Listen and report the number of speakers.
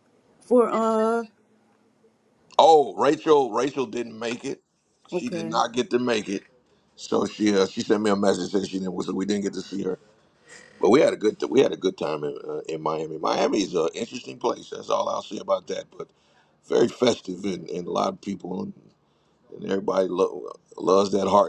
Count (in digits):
2